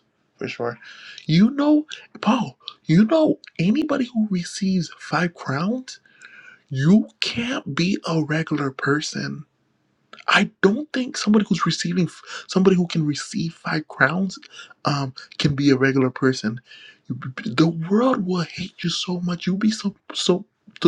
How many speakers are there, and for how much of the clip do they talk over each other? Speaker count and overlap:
one, no overlap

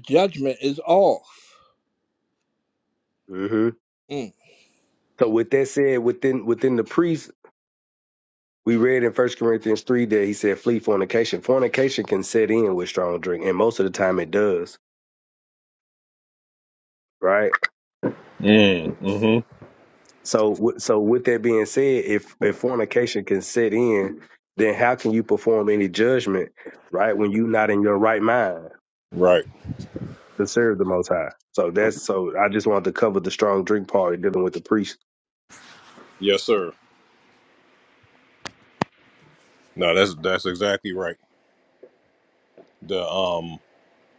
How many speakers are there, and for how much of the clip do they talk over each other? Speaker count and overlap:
three, no overlap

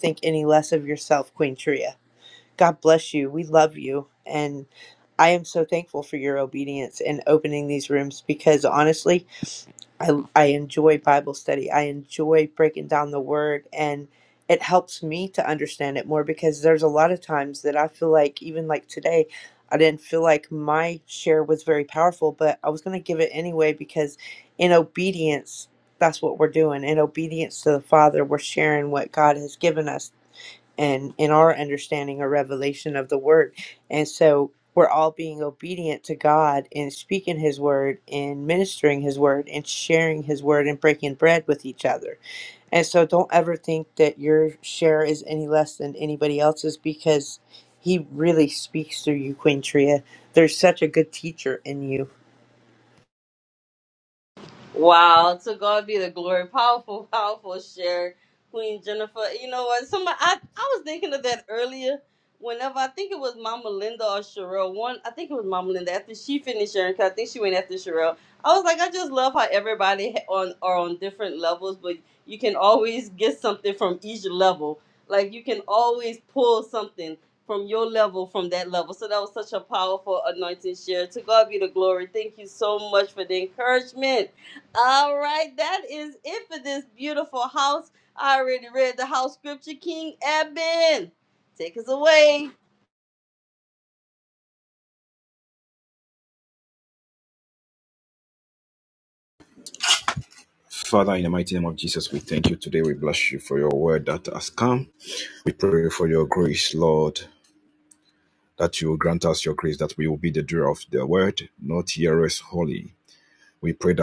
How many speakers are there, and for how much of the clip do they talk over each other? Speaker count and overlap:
three, no overlap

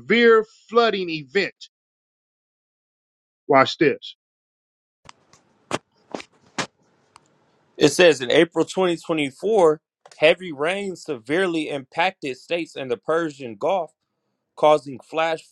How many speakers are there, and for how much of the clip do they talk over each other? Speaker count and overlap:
two, no overlap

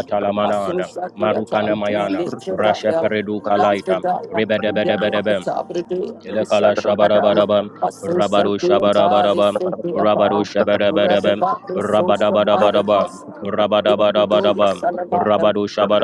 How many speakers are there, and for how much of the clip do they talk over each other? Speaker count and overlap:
two, about 54%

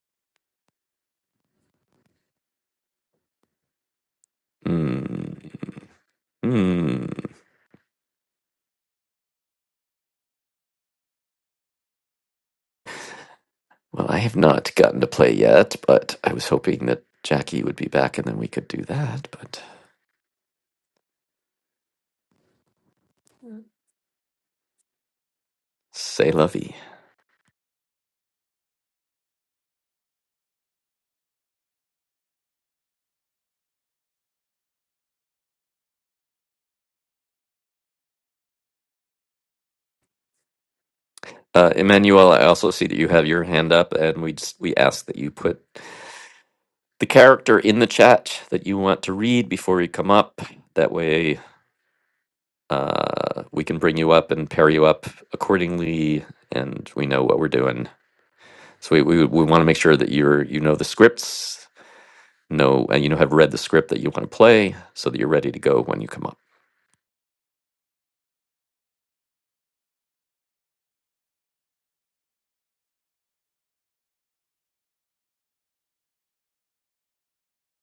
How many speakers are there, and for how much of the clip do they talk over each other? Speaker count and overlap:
one, no overlap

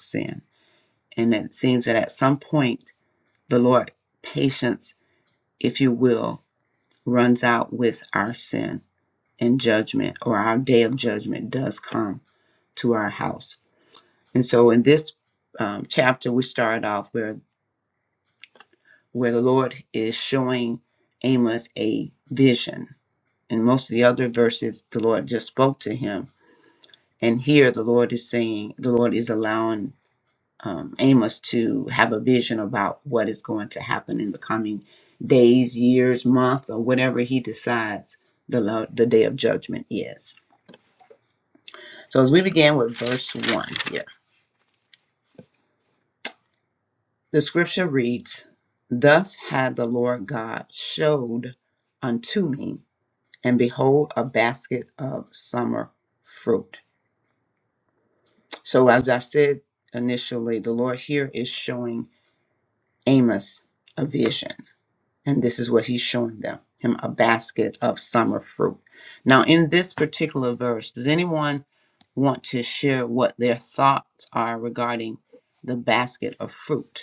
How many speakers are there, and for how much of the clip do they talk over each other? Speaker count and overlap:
one, no overlap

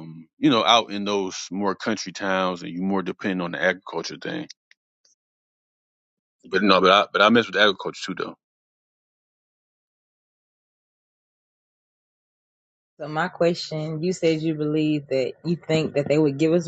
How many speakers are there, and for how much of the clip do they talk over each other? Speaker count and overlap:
two, no overlap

